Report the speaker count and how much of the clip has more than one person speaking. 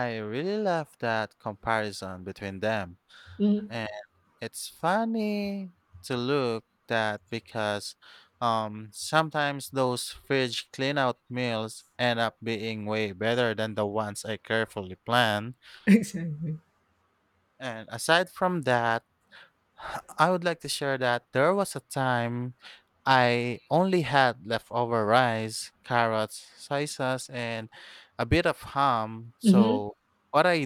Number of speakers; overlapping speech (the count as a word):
two, about 1%